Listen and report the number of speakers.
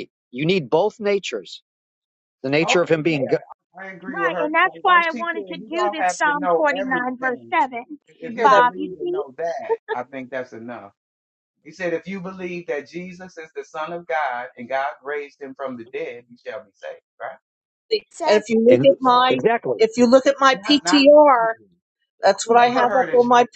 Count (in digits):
4